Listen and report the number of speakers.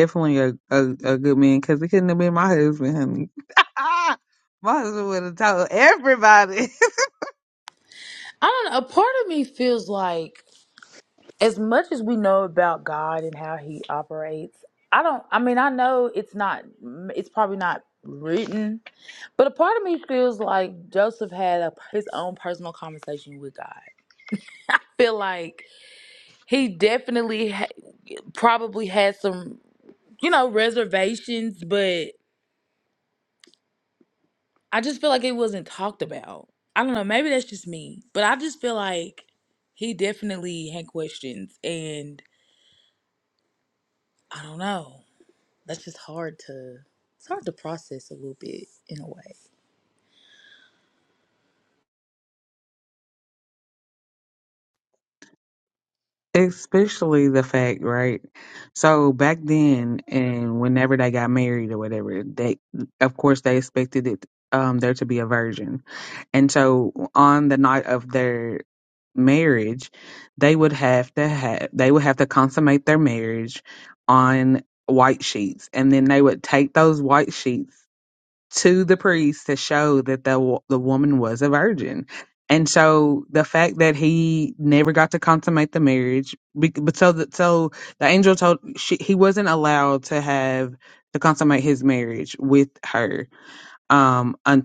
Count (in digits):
2